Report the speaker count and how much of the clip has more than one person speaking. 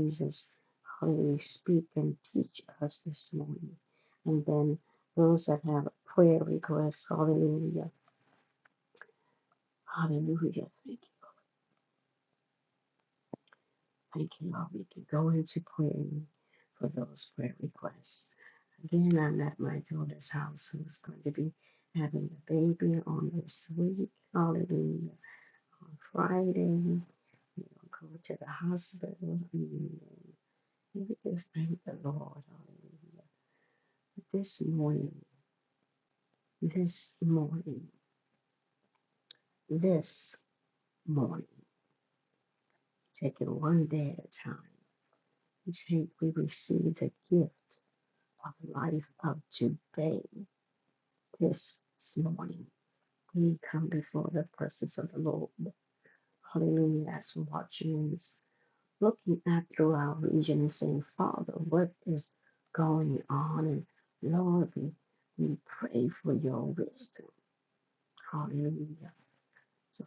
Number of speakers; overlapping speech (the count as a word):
one, no overlap